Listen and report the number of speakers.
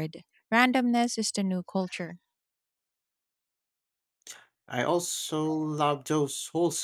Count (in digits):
2